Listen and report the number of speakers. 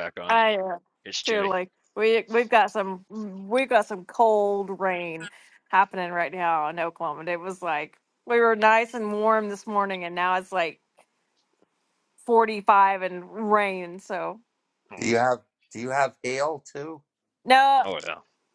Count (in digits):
3